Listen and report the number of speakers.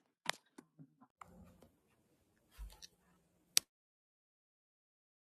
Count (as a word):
zero